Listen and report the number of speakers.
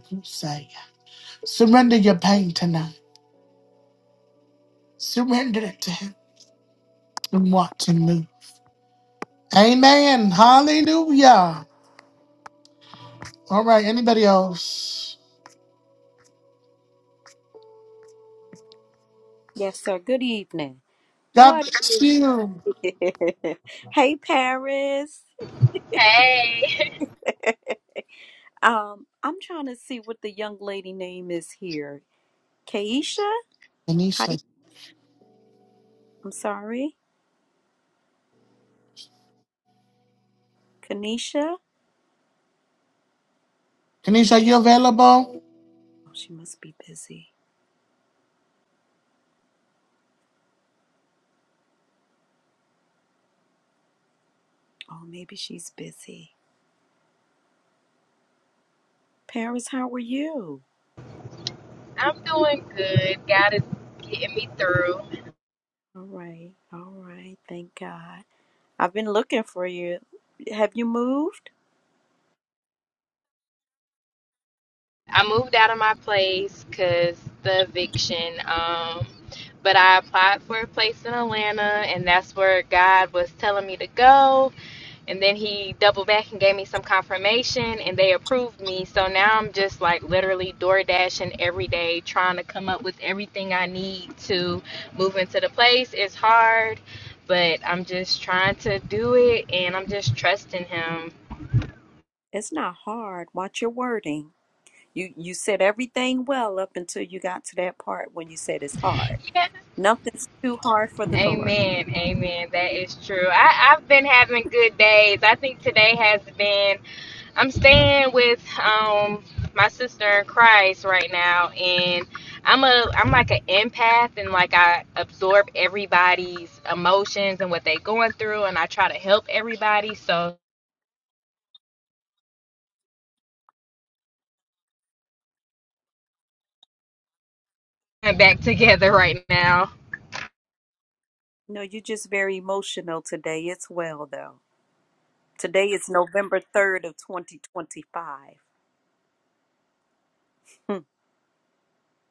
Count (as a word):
three